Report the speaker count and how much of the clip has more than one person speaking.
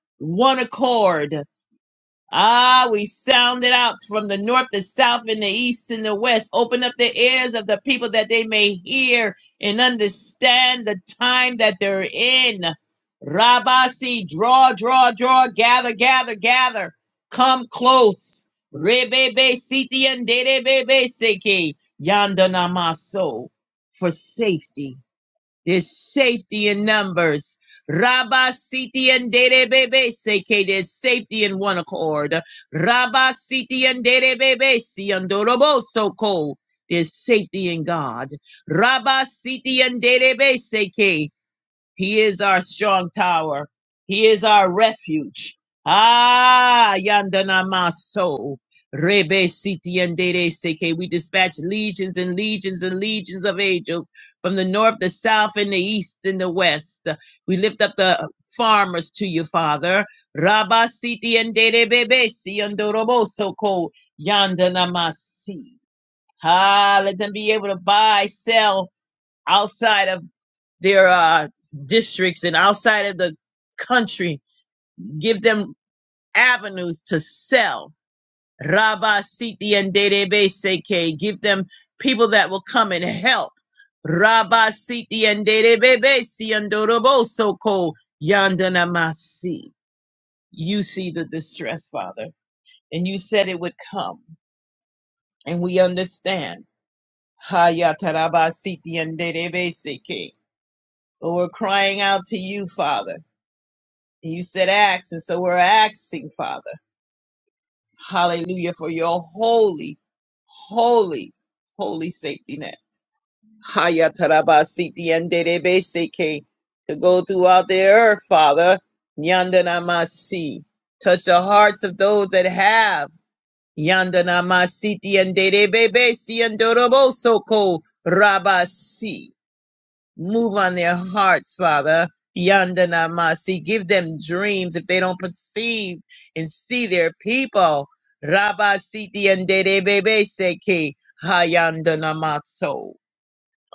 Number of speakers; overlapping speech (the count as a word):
one, no overlap